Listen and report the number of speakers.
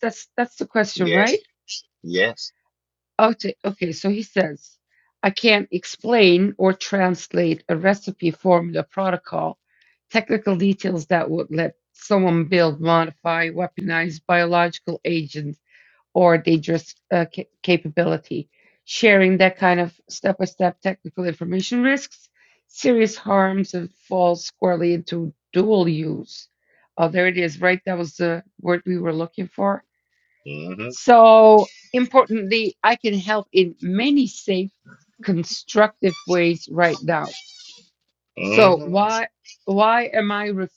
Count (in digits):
2